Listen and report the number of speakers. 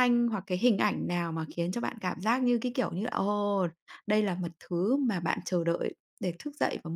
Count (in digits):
1